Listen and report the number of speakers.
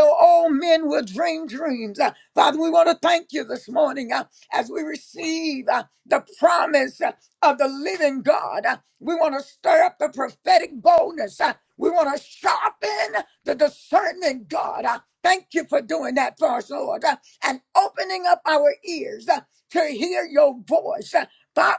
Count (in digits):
1